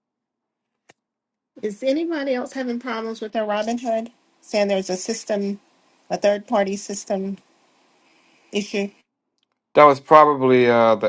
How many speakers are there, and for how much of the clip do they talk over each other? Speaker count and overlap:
2, no overlap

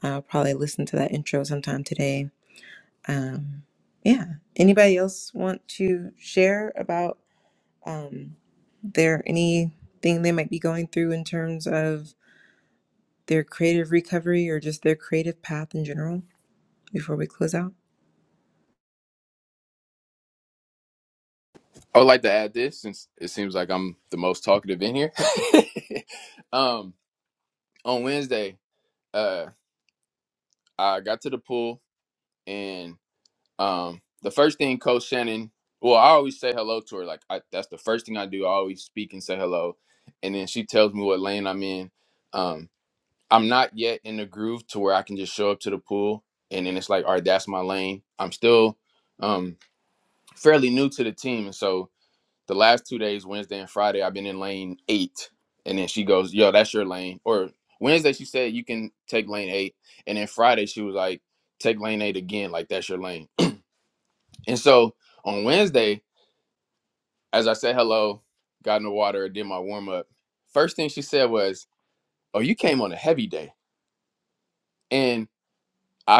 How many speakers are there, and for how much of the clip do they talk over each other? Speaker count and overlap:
2, no overlap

